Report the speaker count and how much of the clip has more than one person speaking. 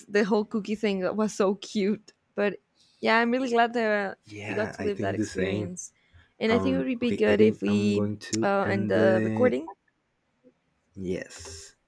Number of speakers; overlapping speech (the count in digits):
2, about 33%